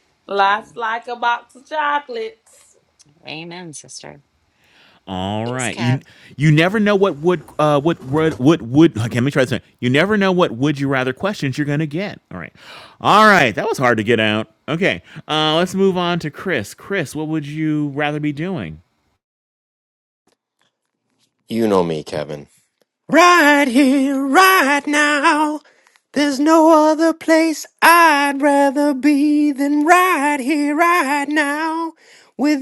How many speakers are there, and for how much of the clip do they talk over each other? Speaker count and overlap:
4, about 2%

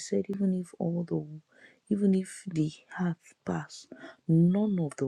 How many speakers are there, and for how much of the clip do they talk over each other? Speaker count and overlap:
1, no overlap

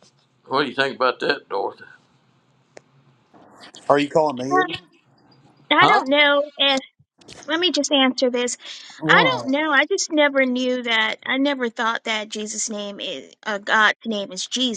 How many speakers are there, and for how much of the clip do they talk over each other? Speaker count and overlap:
3, about 6%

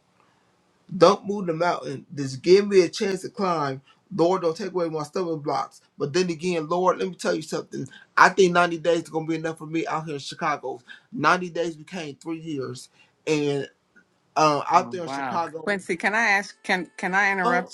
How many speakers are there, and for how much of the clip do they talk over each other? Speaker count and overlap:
2, about 8%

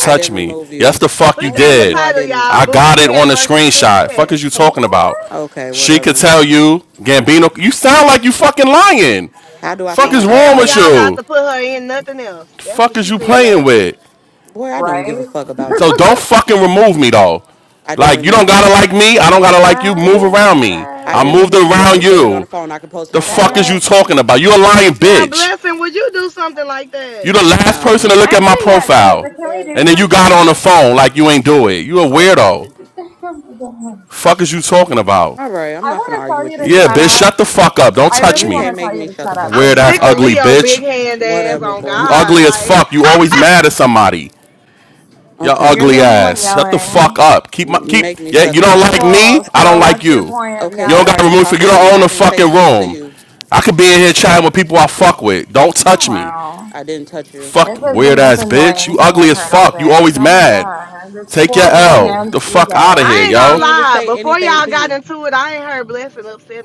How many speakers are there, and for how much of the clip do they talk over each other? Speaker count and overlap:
4, about 54%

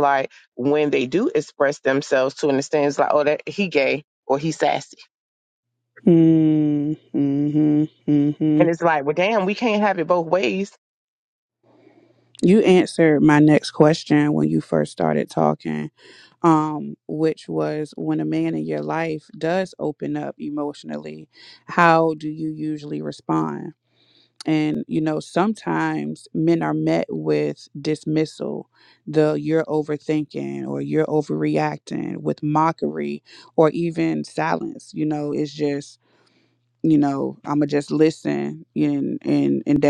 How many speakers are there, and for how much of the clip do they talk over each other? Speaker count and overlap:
2, under 1%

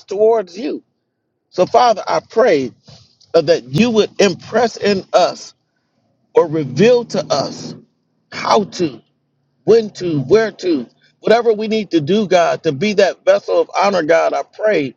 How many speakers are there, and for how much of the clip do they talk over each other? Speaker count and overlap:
1, no overlap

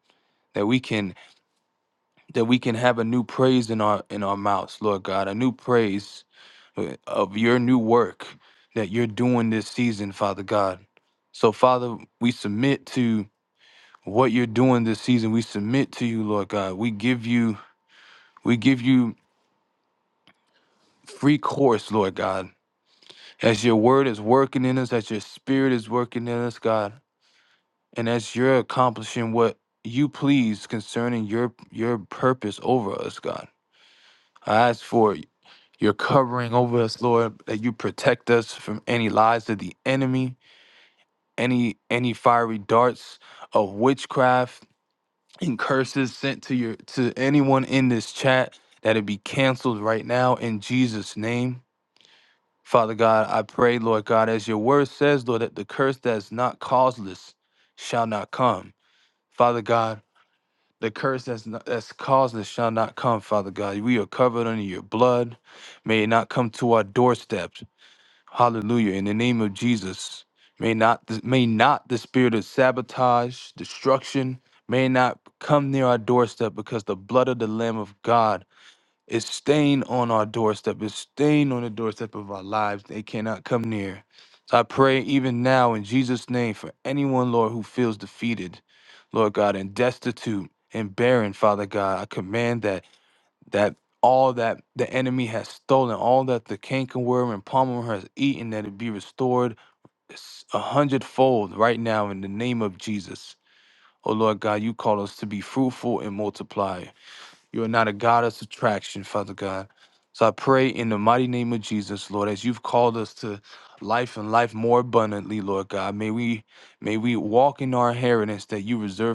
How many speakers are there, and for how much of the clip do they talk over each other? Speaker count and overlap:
1, no overlap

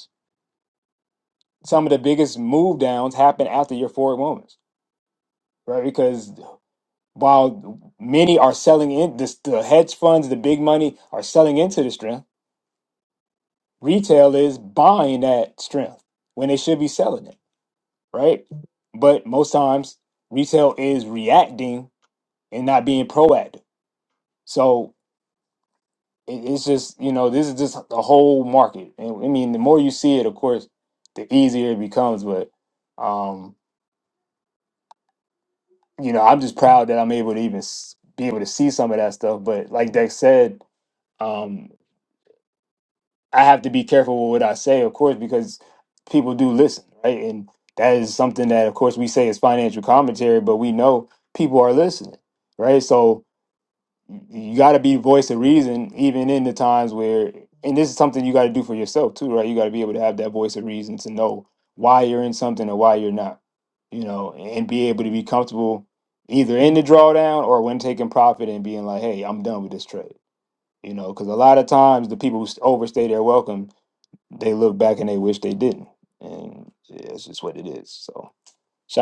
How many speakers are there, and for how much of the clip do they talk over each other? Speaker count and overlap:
1, no overlap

